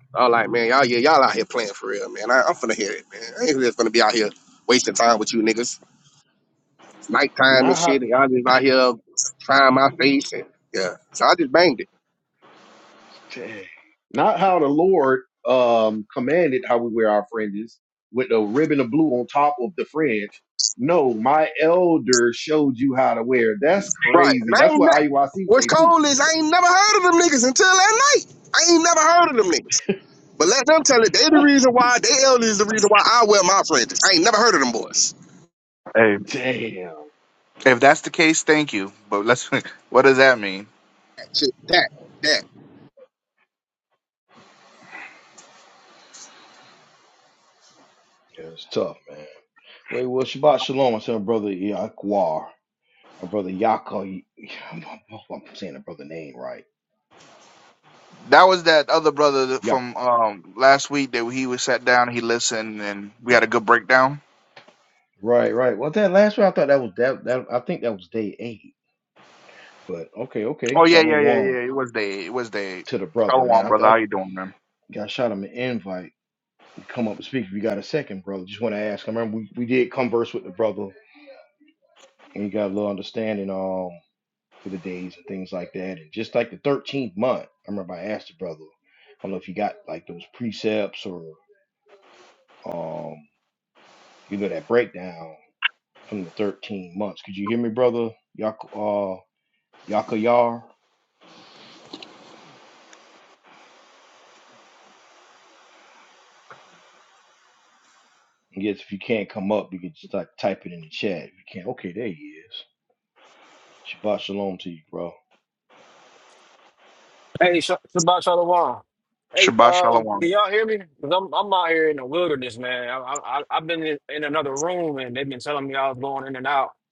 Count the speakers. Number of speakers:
5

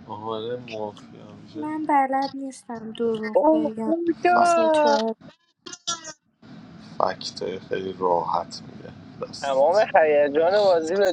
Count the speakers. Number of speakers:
3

